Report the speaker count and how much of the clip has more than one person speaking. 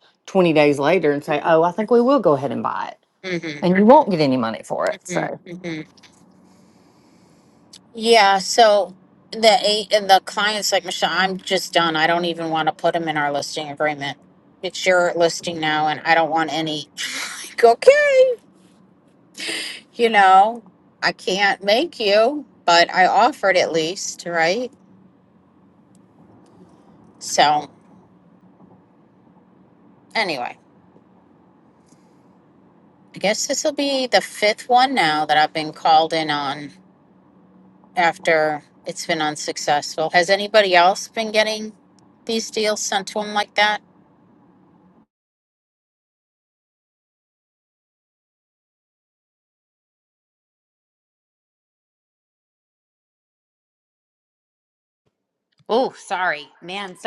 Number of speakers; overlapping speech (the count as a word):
three, under 1%